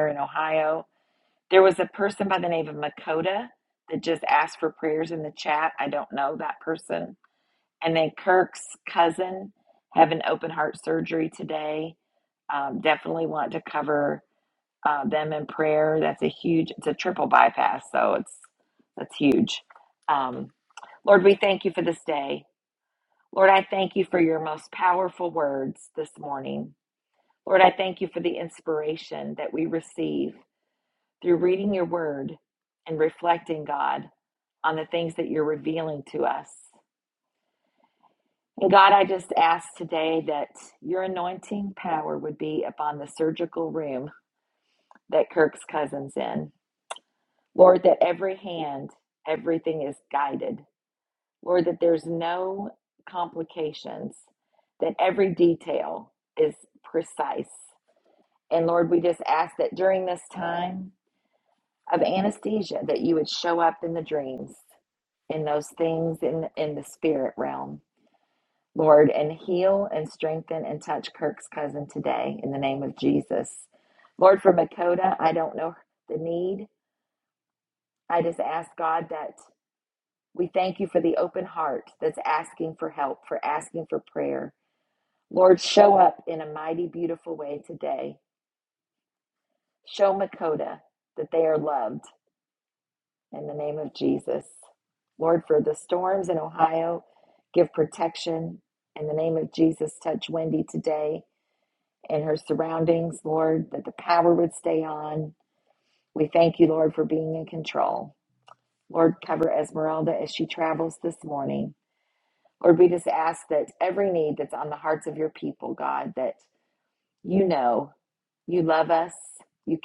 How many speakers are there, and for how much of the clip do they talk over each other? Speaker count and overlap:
one, no overlap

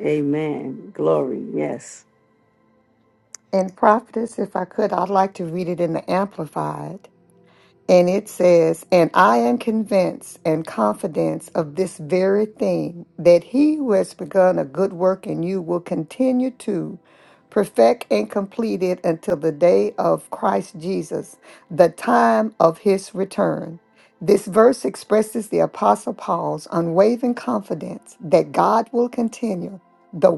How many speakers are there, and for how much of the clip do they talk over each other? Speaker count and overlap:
two, no overlap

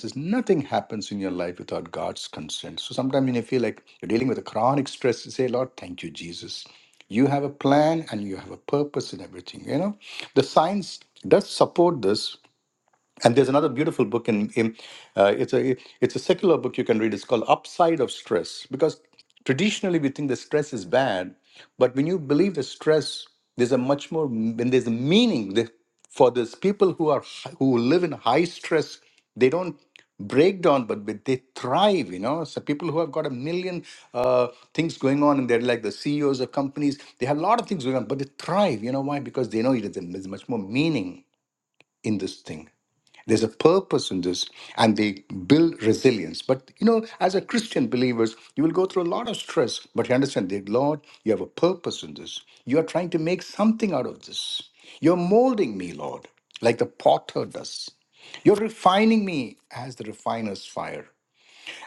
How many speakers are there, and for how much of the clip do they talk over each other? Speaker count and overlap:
one, no overlap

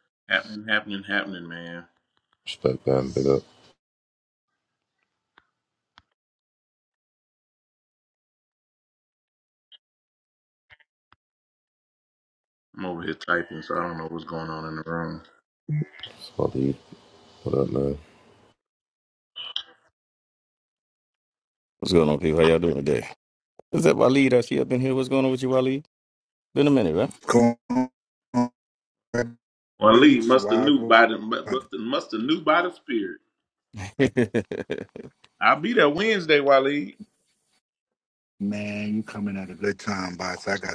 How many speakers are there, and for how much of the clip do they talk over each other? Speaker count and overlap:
four, about 3%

